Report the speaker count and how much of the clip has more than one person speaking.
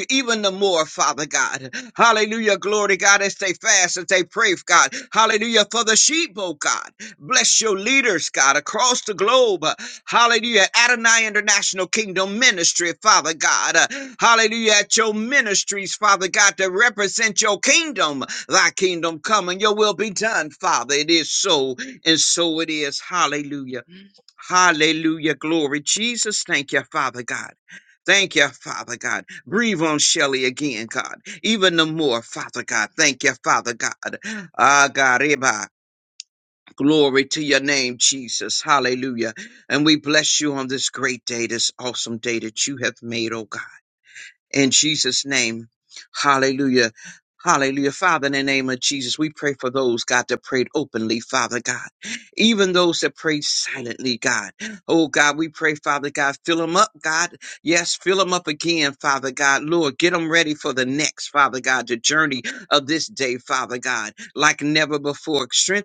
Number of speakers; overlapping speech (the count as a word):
one, no overlap